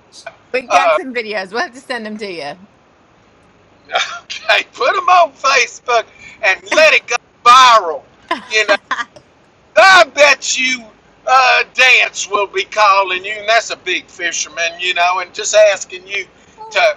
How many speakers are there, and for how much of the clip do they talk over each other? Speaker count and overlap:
2, about 2%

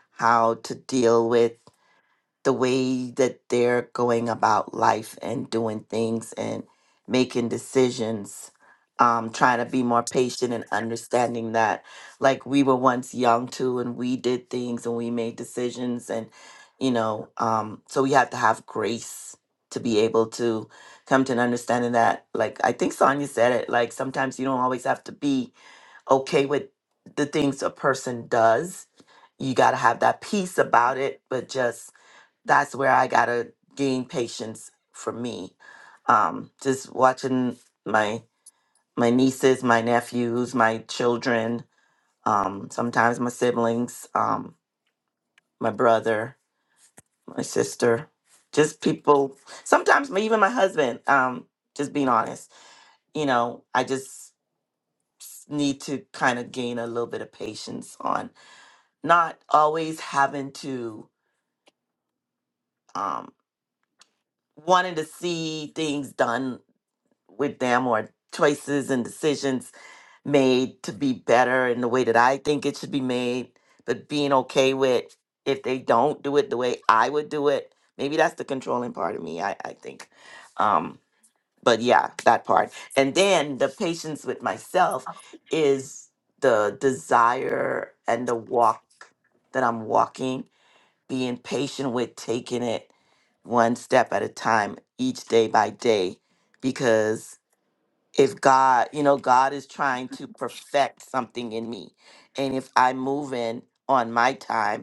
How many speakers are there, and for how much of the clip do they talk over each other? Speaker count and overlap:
1, no overlap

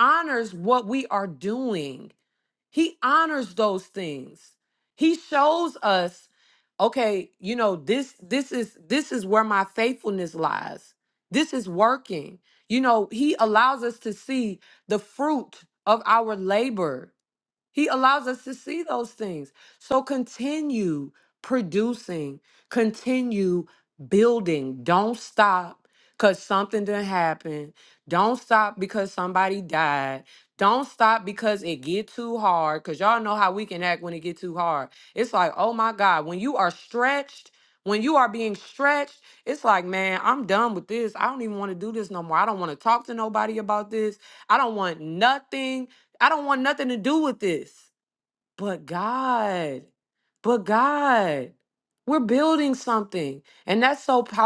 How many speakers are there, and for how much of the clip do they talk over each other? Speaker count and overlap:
1, no overlap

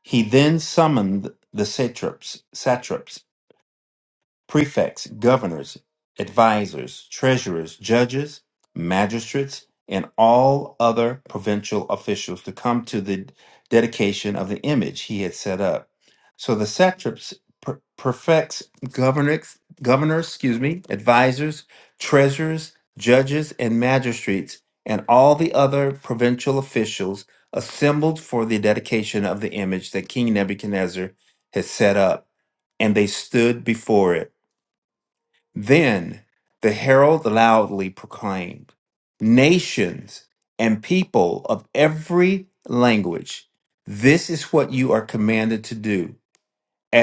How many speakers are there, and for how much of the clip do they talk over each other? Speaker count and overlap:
1, no overlap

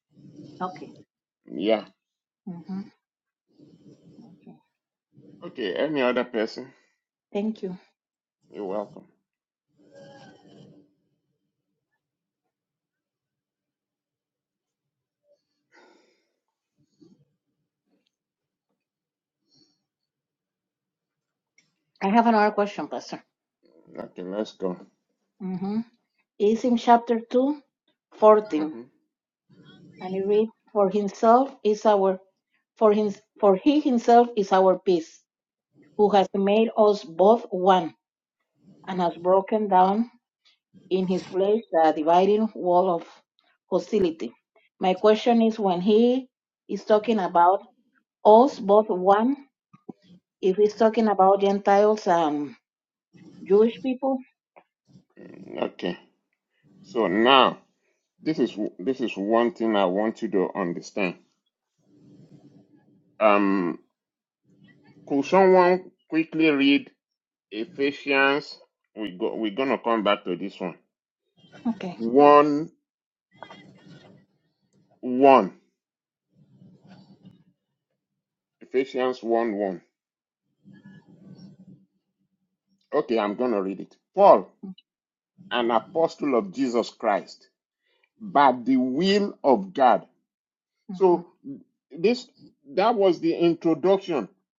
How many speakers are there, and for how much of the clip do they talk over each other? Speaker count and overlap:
2, under 1%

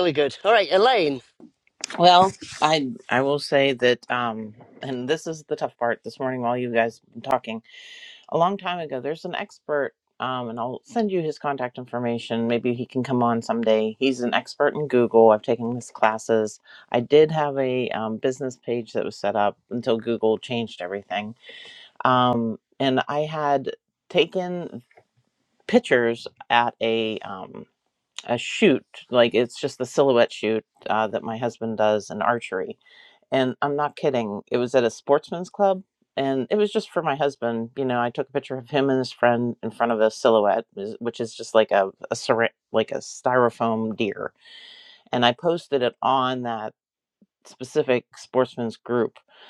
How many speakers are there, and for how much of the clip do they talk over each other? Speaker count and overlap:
2, no overlap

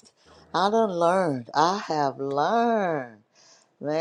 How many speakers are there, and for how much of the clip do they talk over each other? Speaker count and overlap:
1, no overlap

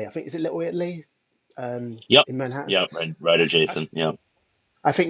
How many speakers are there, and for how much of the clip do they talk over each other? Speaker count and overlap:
2, about 12%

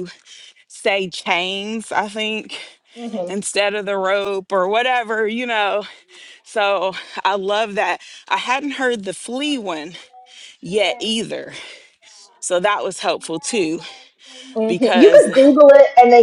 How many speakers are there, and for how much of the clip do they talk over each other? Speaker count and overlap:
2, about 3%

